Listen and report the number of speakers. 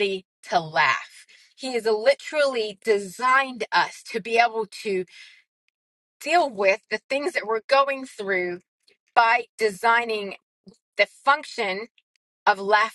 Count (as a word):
one